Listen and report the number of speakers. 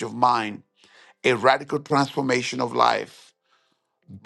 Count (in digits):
1